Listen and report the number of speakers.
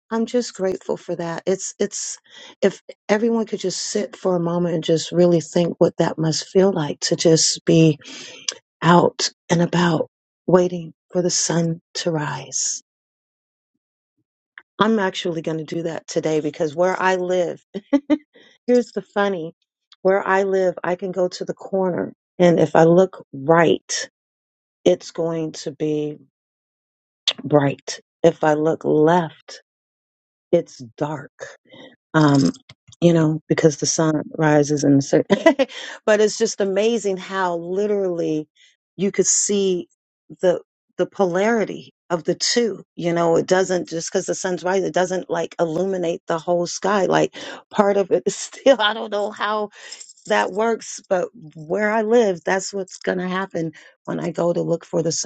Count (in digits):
1